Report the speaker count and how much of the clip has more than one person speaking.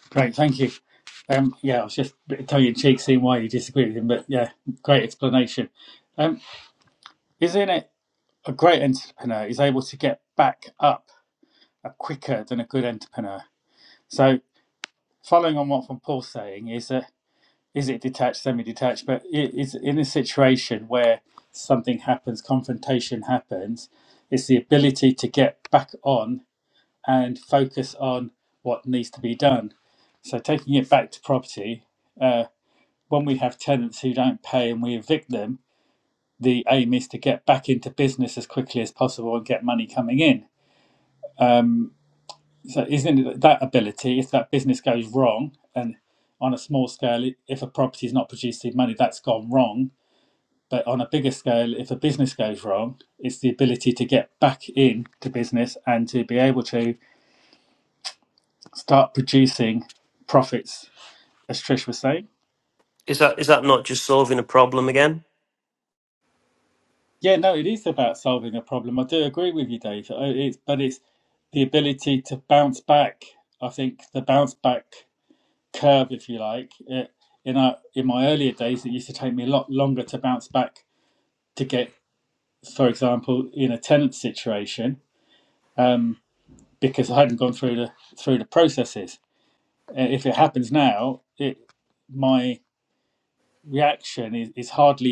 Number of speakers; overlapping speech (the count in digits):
2, no overlap